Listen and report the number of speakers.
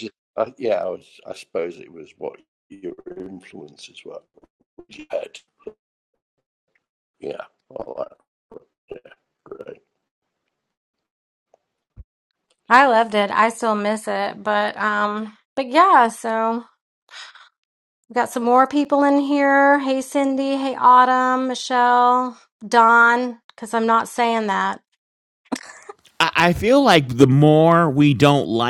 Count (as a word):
three